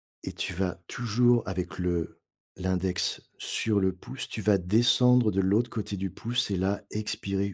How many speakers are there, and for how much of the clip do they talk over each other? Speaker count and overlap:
1, no overlap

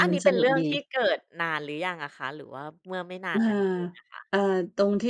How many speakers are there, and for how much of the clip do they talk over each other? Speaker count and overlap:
2, about 16%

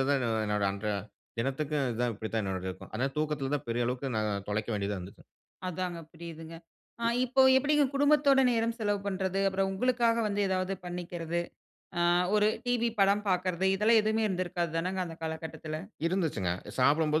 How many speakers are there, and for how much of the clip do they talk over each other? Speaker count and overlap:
2, no overlap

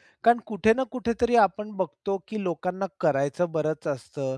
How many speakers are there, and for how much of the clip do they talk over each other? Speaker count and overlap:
1, no overlap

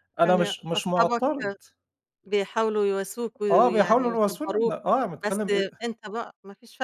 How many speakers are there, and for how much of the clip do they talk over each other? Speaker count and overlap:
2, about 39%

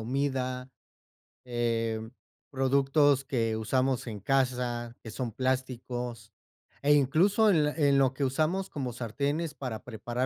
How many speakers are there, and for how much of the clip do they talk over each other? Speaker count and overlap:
1, no overlap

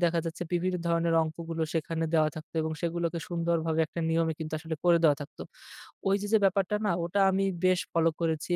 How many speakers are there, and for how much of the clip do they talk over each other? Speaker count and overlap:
1, no overlap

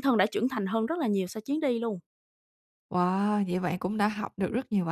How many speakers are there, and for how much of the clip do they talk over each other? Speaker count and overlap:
2, no overlap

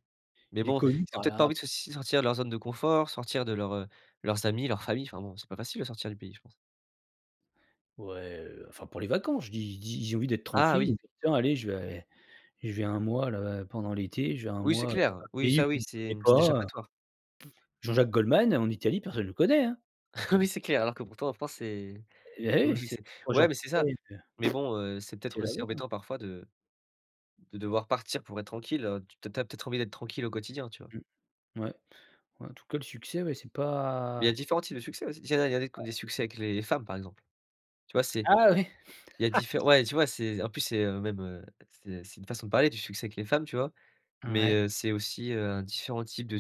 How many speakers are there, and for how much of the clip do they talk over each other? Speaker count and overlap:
2, about 10%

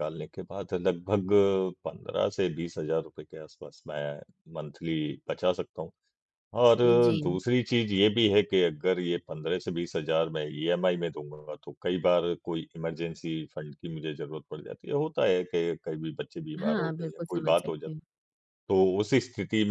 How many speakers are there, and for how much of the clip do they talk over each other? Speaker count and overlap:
2, about 7%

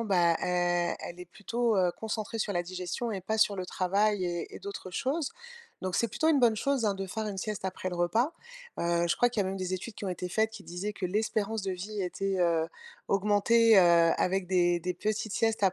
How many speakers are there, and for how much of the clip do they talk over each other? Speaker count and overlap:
1, no overlap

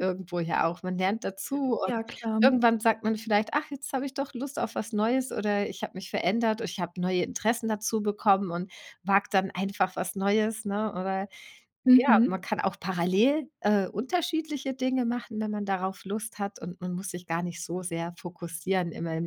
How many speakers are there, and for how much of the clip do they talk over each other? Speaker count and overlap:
2, about 3%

